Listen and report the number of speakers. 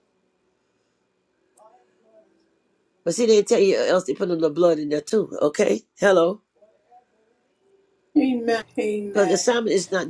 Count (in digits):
2